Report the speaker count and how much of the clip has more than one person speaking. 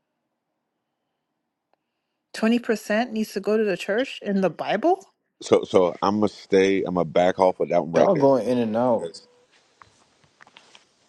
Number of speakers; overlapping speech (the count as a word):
three, about 4%